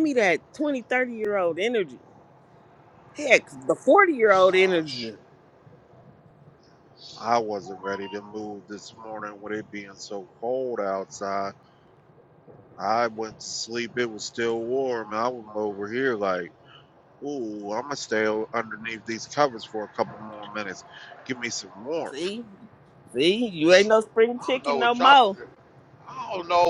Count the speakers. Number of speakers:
three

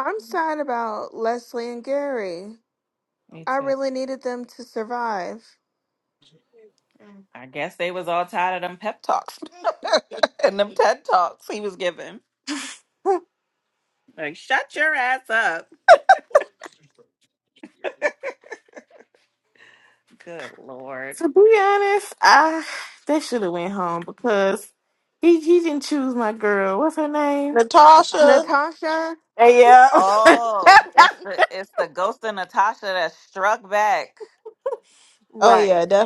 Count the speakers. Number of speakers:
four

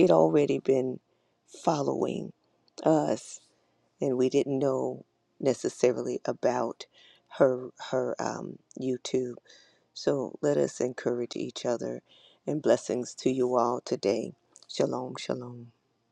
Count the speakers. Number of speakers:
one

